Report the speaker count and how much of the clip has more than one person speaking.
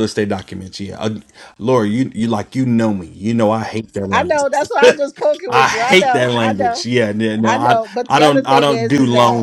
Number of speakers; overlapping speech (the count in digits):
2, about 39%